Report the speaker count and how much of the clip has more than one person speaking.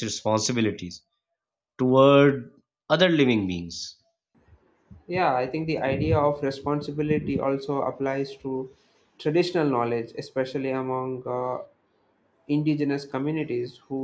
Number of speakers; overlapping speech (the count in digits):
2, no overlap